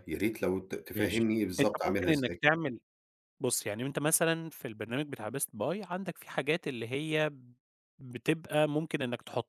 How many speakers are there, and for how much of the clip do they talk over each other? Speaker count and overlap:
two, about 11%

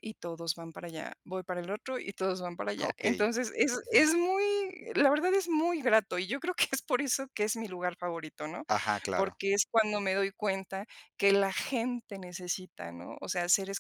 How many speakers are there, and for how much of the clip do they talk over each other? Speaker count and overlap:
two, about 6%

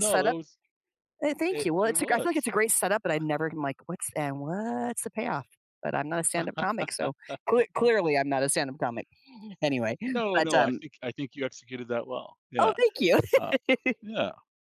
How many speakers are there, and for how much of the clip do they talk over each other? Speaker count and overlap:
two, about 12%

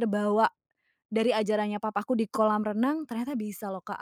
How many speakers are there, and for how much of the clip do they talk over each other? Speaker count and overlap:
one, no overlap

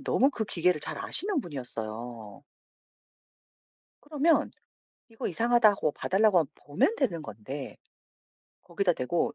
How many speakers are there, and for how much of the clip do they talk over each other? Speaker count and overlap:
one, no overlap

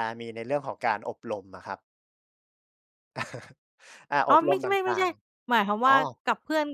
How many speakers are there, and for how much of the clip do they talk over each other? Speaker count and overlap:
two, about 15%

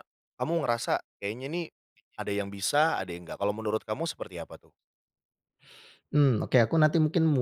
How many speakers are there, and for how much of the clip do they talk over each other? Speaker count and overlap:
two, no overlap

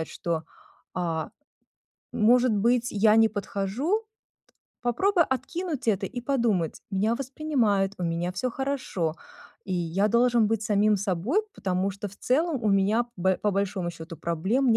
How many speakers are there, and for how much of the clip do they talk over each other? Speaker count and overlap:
one, no overlap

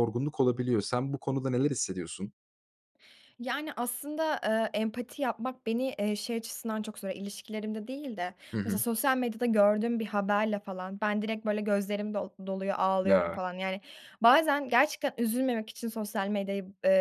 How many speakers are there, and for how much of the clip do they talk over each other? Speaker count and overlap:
two, about 3%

